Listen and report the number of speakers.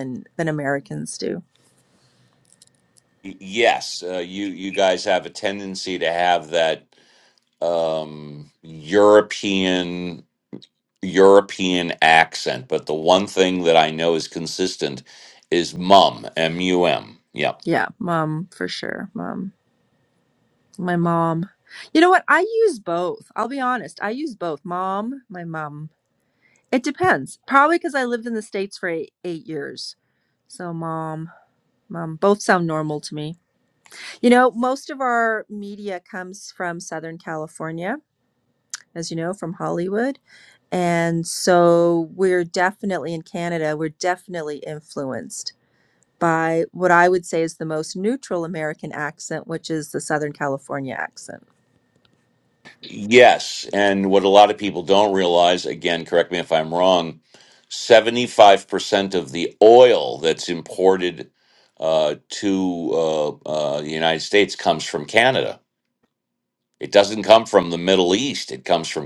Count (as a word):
two